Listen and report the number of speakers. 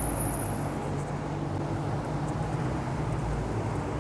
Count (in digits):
0